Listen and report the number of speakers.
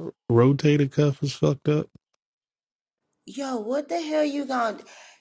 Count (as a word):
two